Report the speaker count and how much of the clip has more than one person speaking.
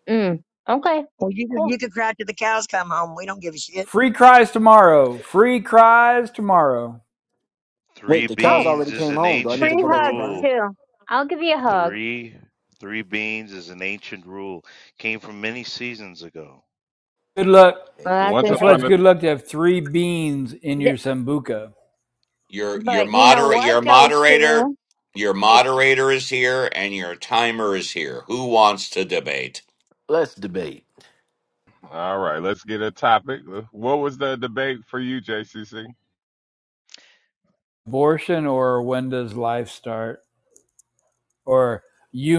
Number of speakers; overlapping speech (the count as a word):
seven, about 14%